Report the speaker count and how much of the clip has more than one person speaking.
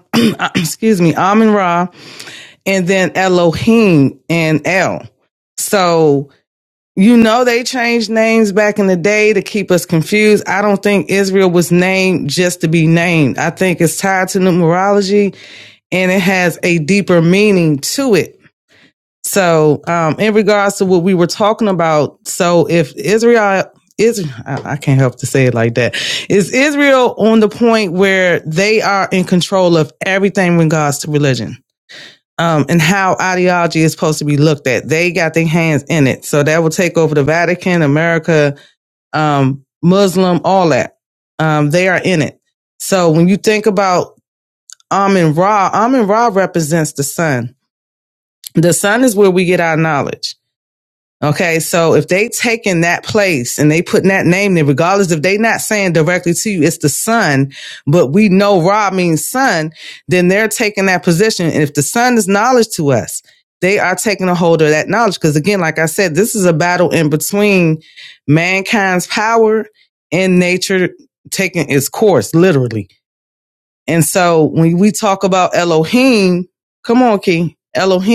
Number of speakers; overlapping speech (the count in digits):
1, no overlap